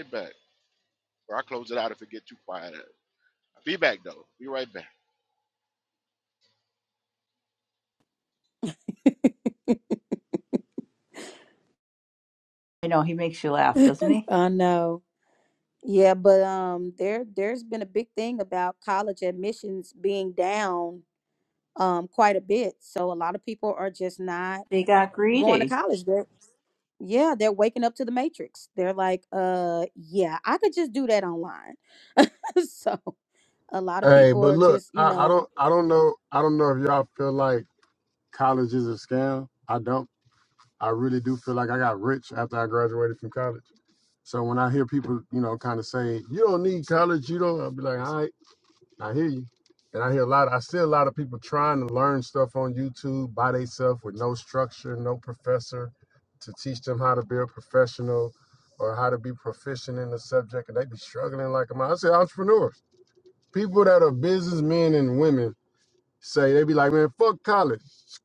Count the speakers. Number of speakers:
4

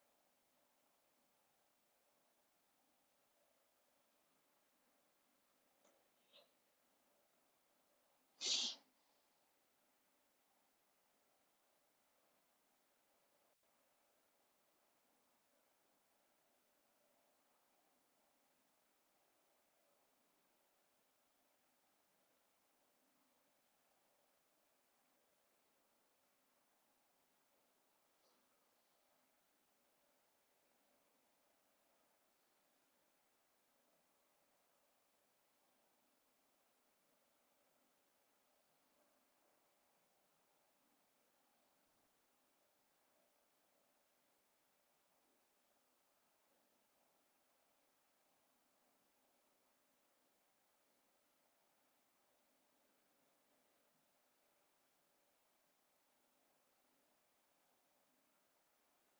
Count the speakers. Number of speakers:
0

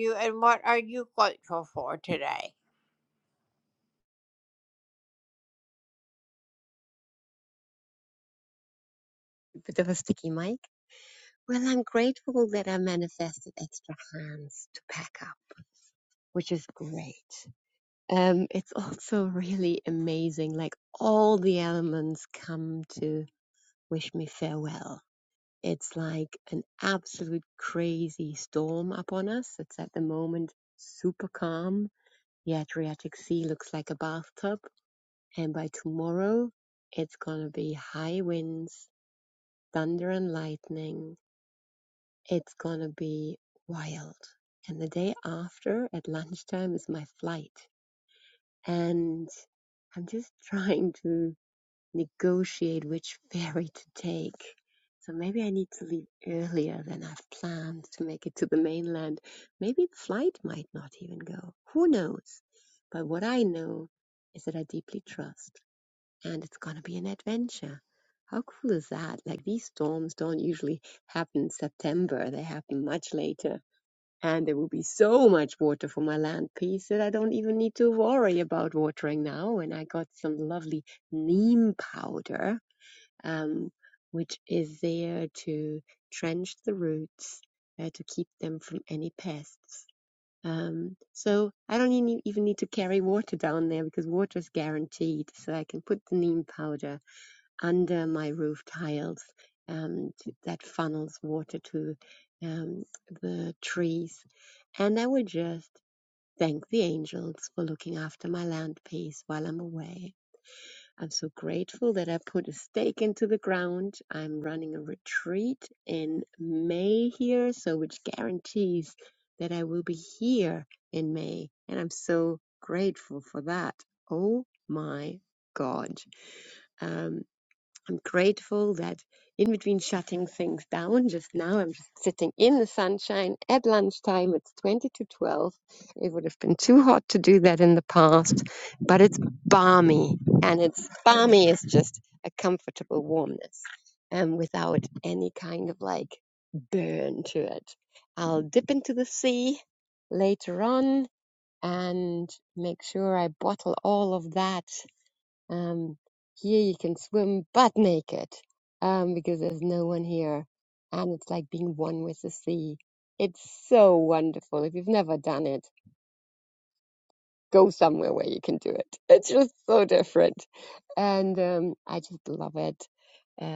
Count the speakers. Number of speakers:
2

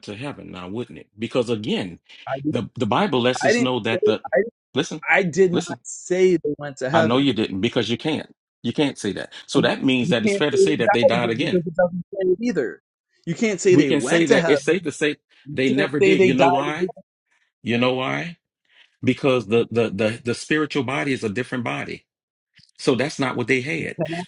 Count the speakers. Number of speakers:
2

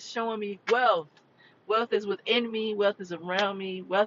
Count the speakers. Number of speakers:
1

